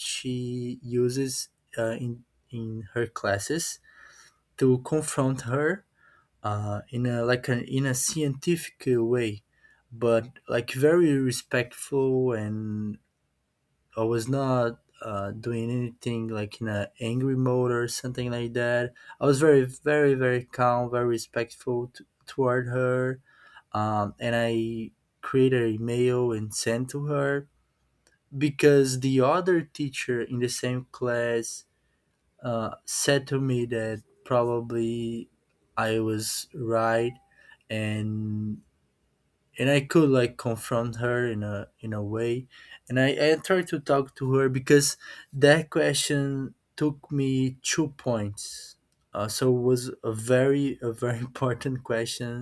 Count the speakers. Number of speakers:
1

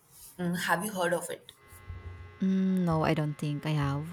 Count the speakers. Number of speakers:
2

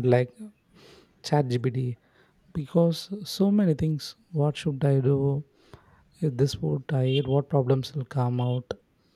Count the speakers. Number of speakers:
1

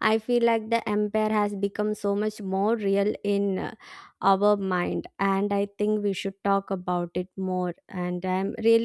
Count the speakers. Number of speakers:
1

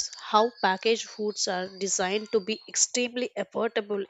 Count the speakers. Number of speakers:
1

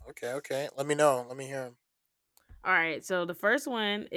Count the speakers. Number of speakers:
2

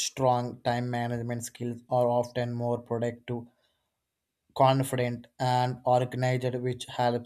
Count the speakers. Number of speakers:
1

